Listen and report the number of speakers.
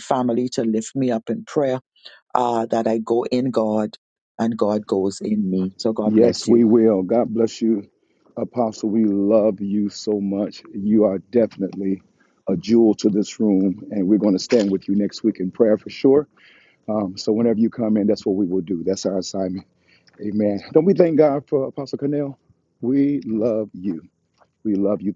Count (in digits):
2